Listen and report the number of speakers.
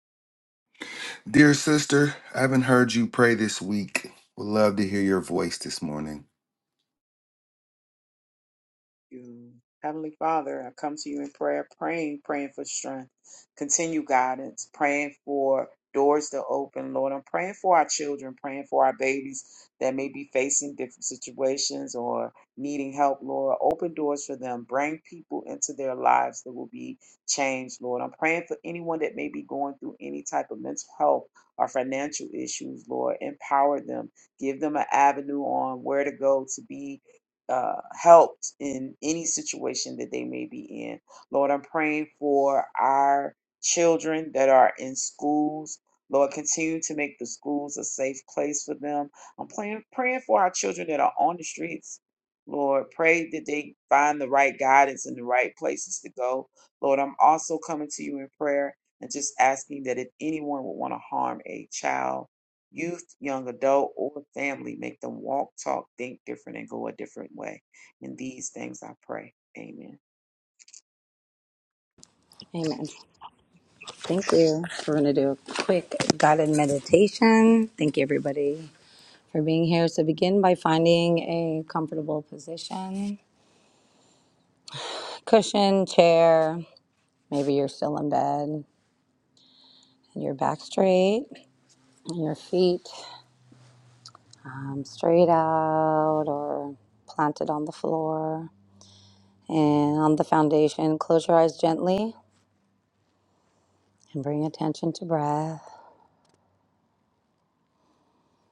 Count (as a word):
three